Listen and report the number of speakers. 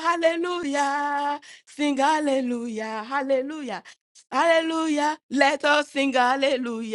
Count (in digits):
1